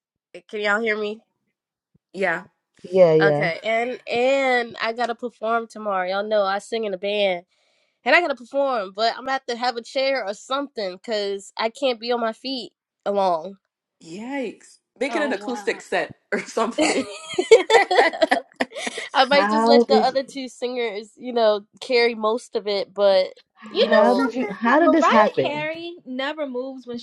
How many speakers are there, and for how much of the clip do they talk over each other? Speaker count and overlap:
4, about 14%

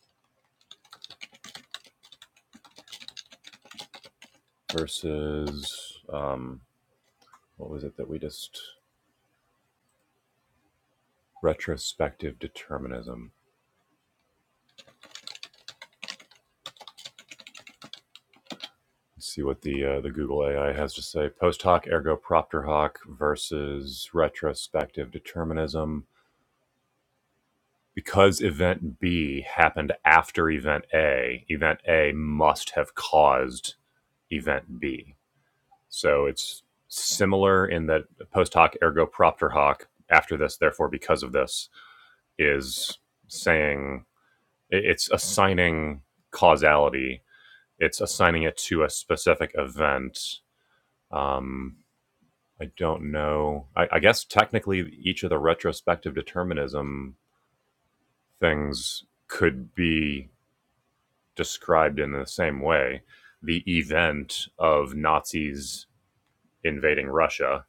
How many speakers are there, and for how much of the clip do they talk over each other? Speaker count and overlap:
1, no overlap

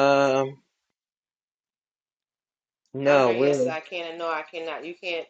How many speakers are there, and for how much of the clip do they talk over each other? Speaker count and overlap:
2, about 12%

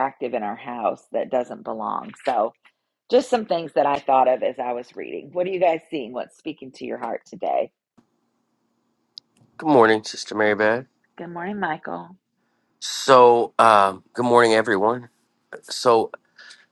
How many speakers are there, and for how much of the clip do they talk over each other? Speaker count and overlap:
2, no overlap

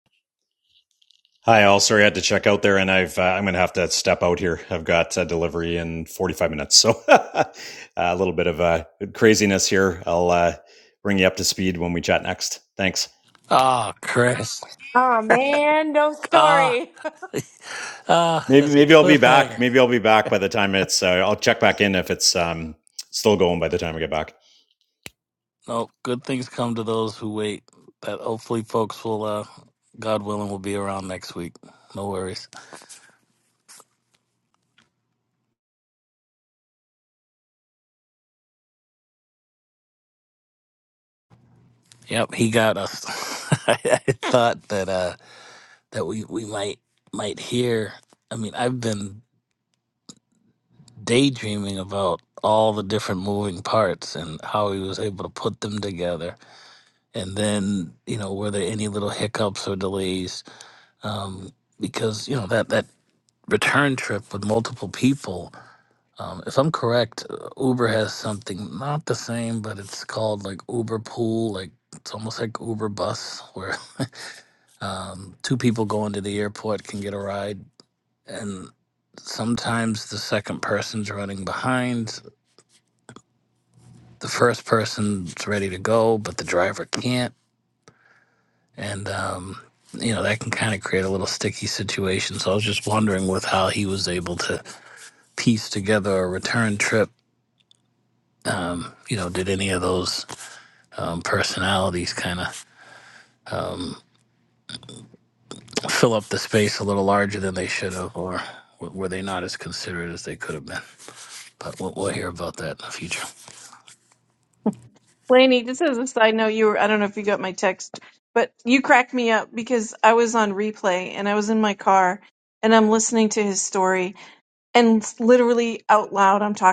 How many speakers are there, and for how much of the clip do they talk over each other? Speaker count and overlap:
4, about 1%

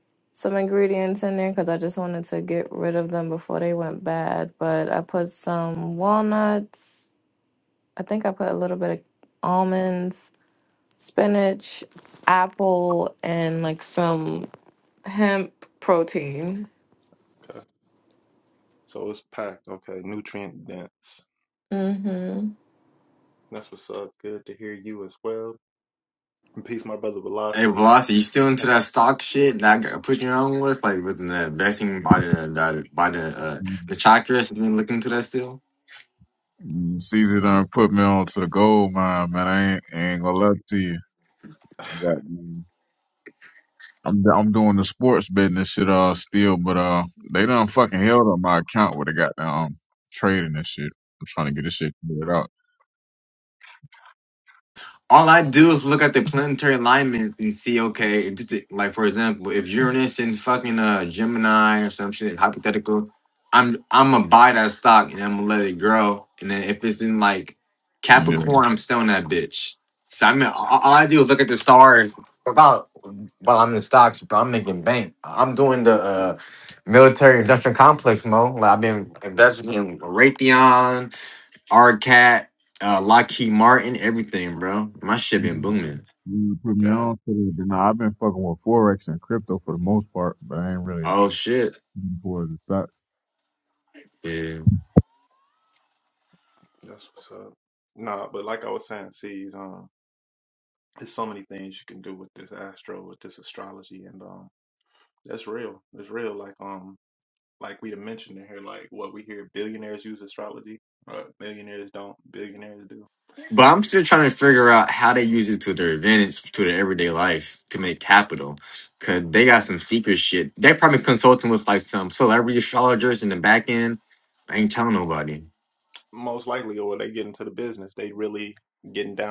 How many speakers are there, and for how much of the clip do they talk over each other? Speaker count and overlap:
4, about 1%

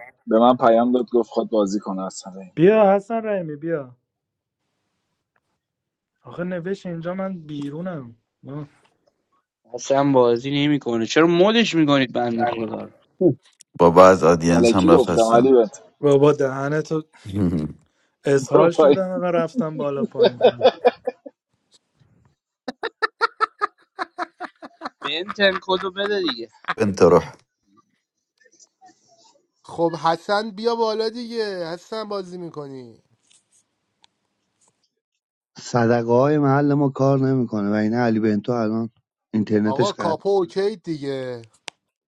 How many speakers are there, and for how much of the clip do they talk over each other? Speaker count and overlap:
6, about 6%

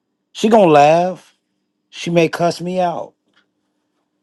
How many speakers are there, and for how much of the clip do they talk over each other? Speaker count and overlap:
1, no overlap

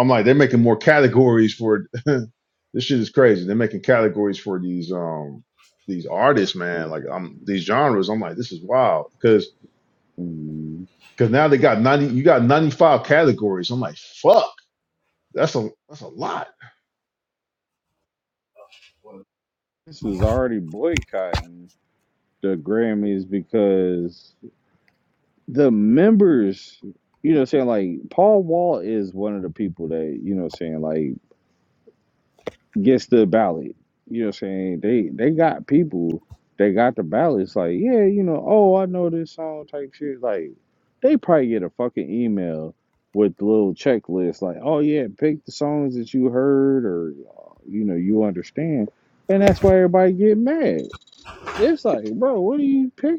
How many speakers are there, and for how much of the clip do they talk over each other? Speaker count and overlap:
2, under 1%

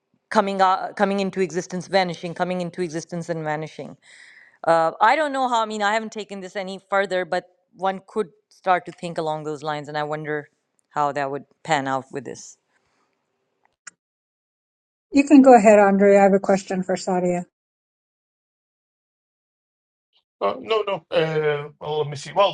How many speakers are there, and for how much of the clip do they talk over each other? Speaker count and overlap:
3, no overlap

